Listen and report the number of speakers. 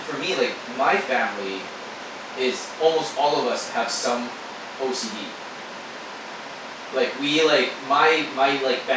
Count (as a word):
one